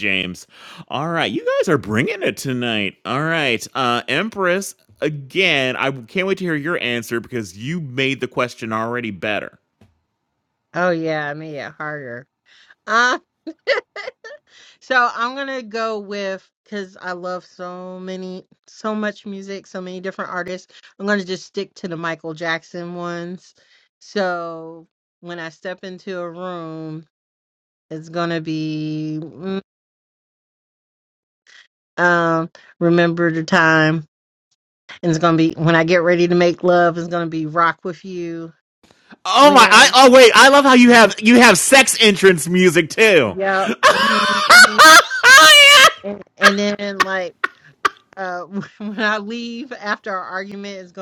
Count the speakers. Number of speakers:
2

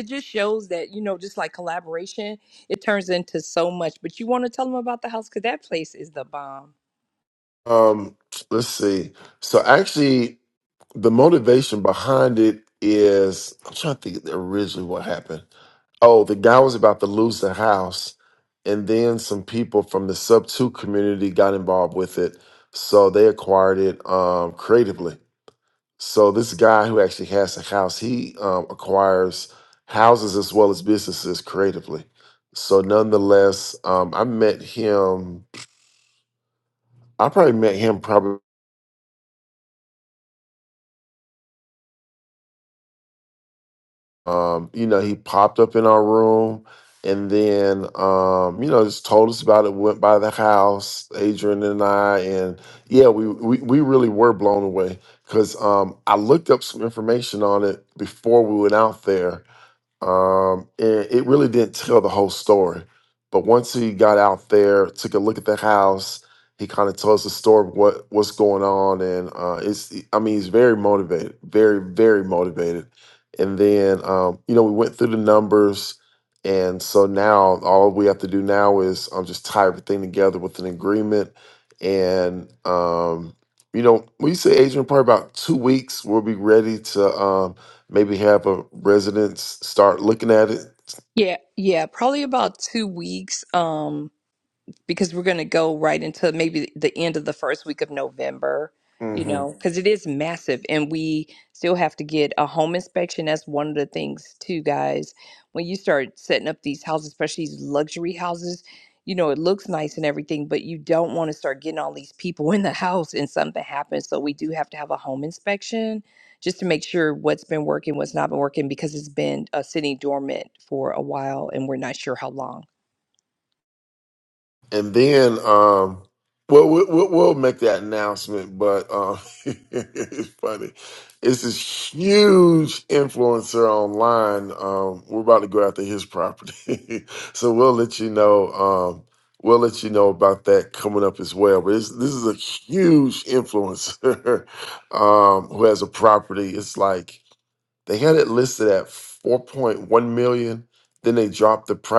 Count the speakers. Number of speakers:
2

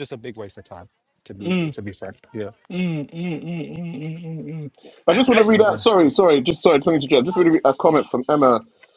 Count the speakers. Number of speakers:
3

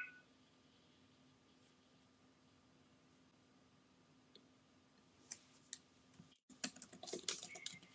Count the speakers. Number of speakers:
0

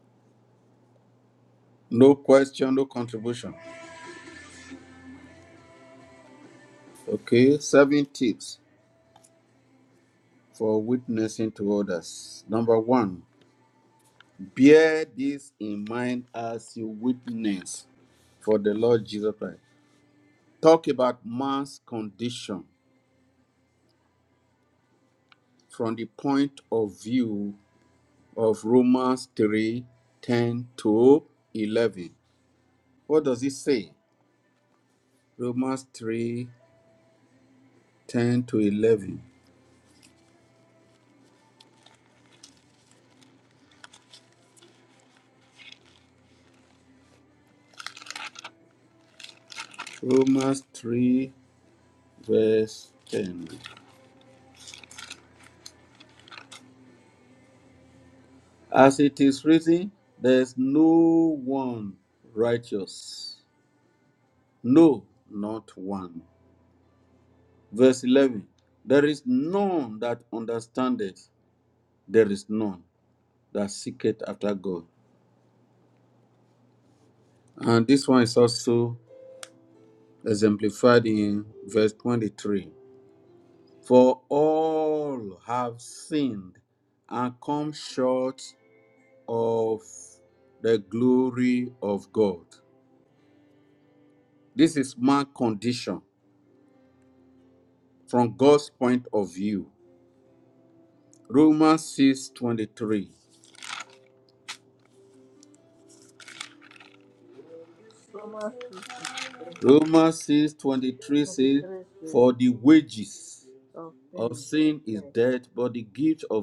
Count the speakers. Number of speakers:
2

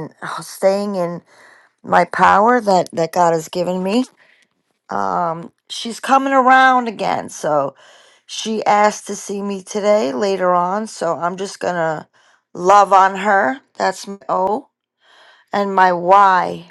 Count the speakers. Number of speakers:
1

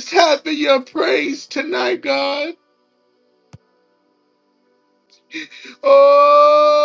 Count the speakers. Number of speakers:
1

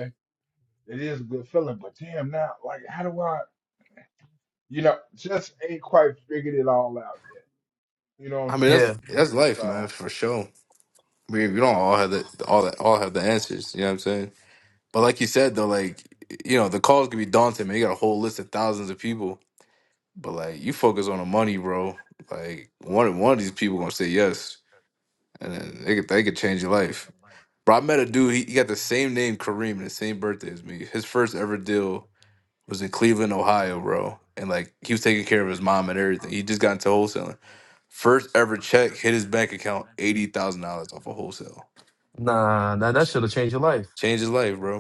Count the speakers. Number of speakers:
3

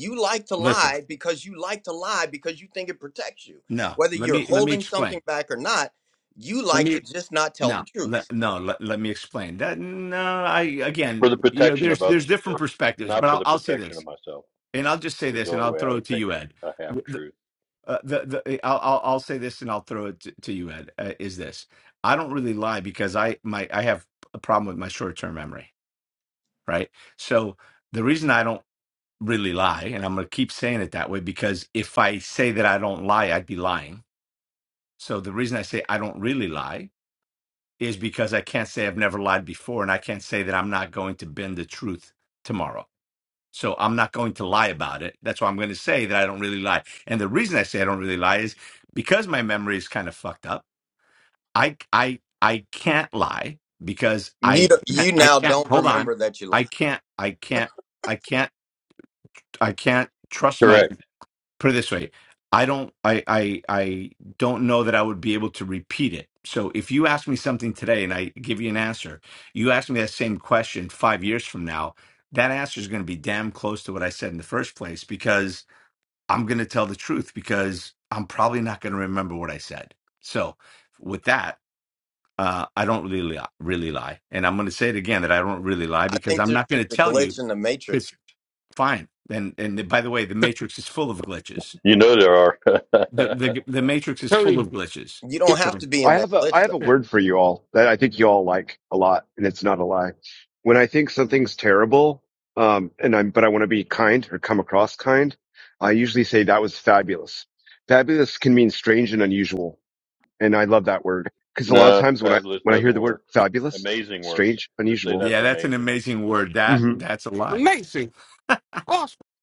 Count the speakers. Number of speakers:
5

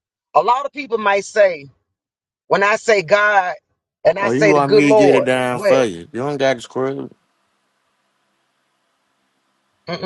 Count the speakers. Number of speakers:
2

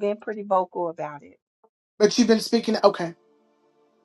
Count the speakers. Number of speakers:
2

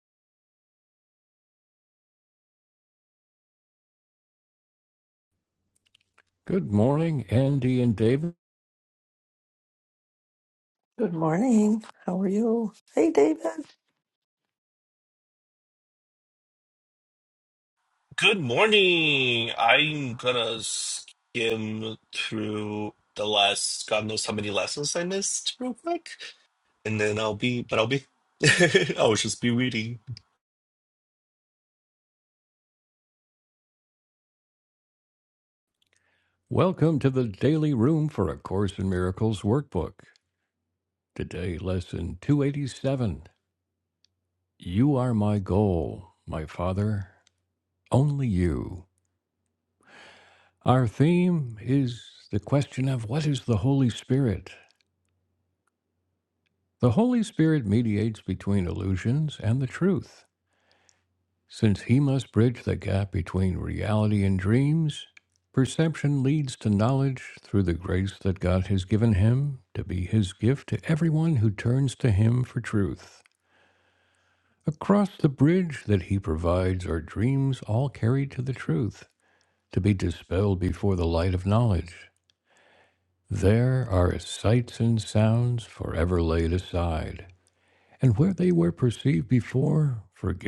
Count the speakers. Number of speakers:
3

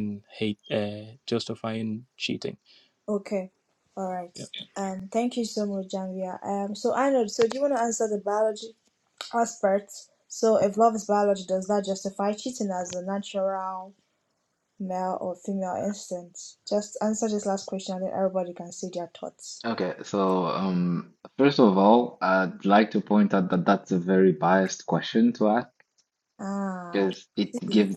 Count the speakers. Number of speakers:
3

